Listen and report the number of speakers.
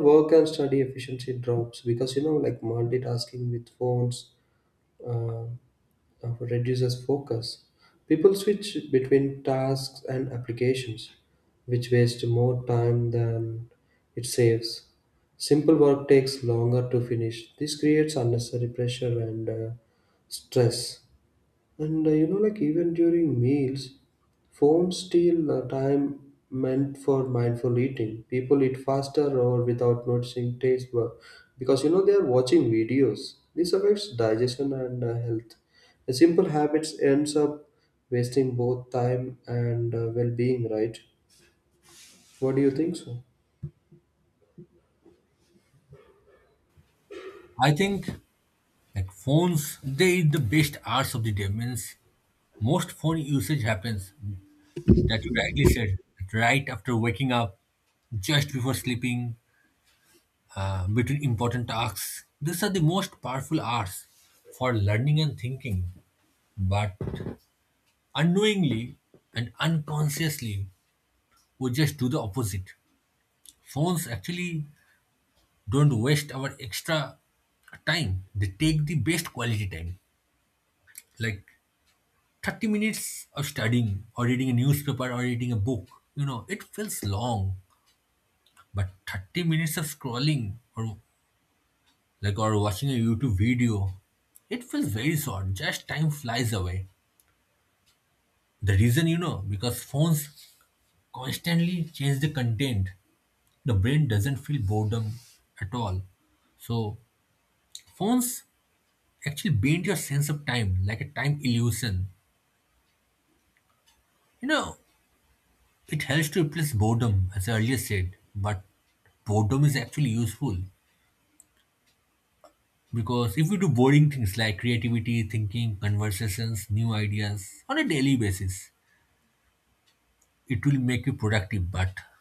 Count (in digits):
2